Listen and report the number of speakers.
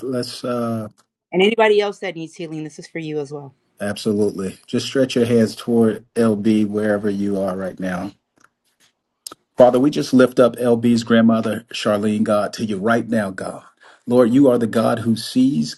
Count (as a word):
two